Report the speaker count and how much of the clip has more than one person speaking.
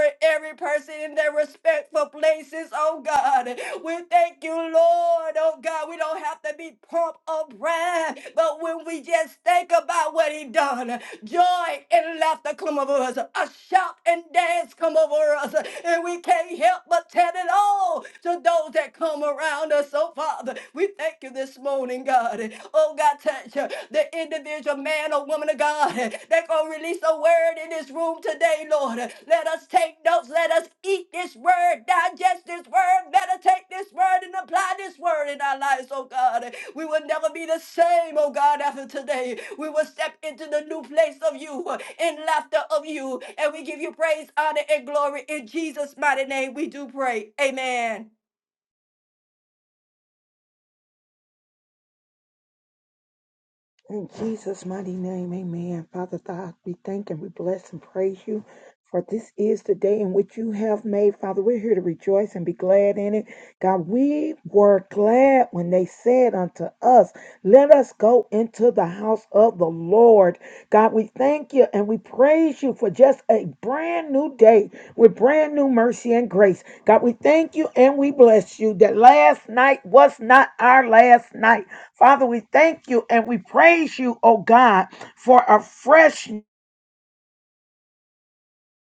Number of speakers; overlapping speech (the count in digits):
2, no overlap